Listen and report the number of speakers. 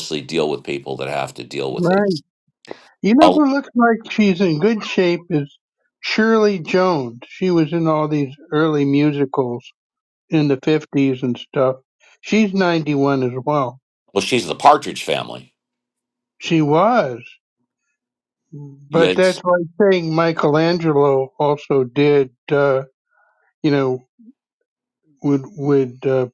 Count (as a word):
two